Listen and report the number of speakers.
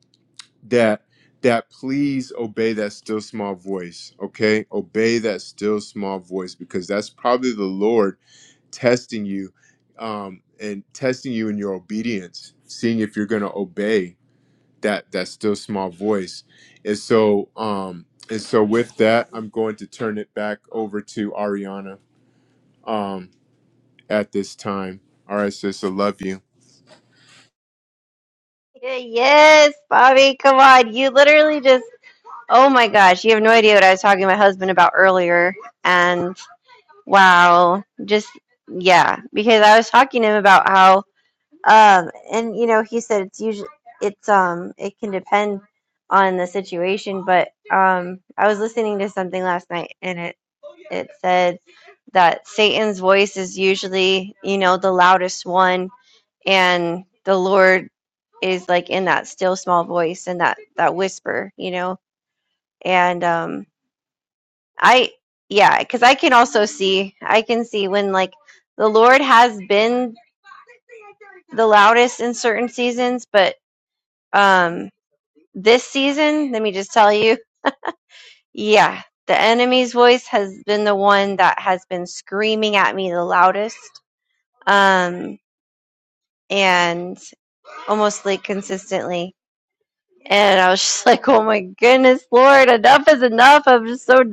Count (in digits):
2